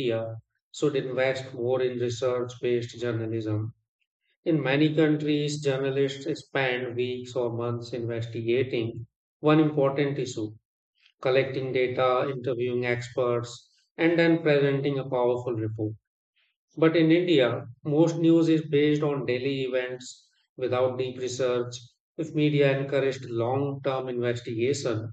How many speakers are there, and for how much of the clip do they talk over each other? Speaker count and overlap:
1, no overlap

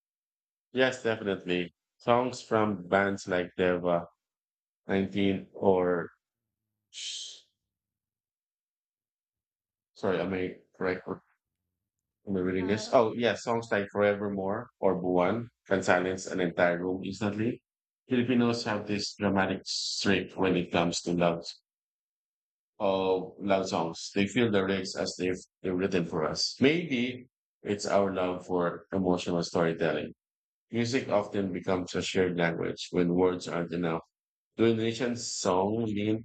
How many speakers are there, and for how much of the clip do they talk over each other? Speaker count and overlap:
1, no overlap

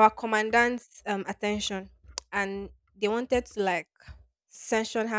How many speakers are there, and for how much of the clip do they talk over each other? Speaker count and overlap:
1, no overlap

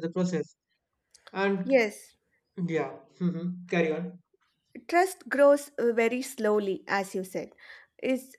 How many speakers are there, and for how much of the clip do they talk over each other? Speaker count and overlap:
2, about 1%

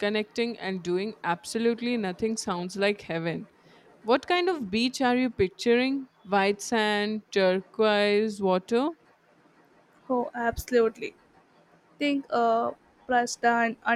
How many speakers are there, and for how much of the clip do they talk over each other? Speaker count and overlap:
2, no overlap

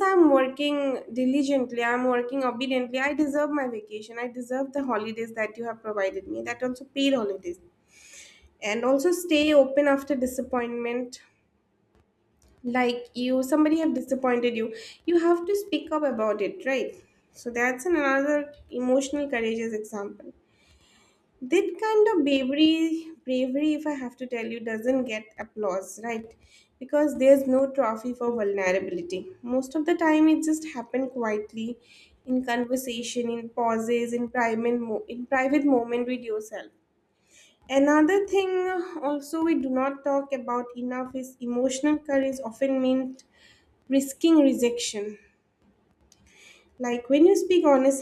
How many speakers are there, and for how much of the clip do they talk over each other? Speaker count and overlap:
1, no overlap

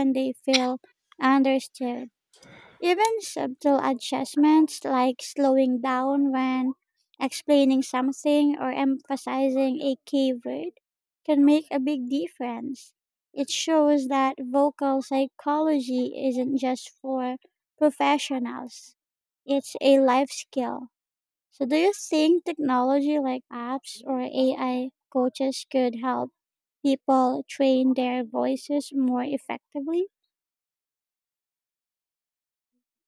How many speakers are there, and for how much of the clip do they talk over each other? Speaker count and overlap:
1, no overlap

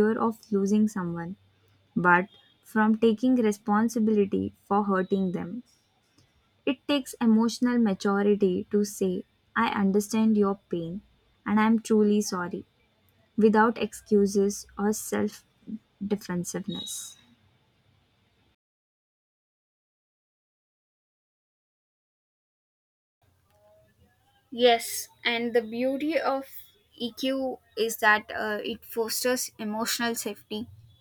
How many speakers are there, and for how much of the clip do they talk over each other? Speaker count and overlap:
2, no overlap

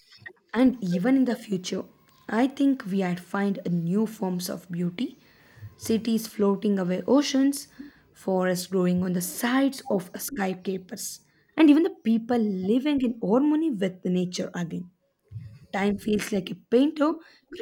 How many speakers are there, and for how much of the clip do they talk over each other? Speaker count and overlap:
1, no overlap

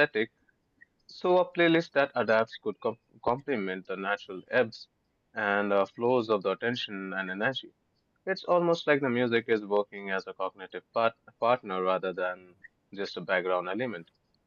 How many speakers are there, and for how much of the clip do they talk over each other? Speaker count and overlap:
1, no overlap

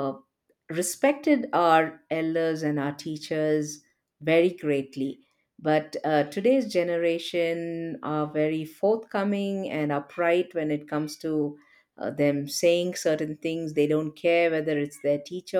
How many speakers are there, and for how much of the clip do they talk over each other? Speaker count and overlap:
1, no overlap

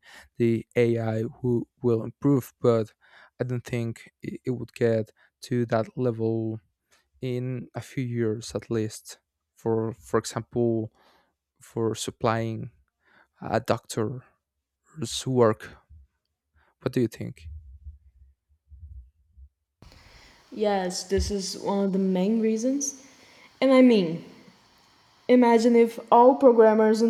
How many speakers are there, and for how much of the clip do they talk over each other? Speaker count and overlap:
2, no overlap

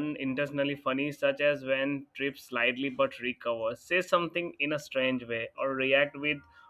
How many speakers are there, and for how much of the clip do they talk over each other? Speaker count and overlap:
1, no overlap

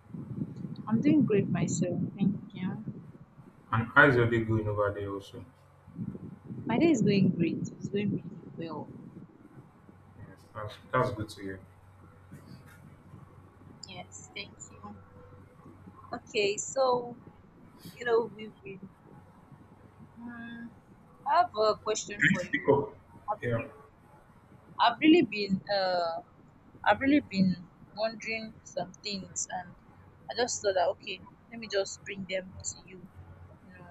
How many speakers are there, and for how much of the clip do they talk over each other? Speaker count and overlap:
2, about 2%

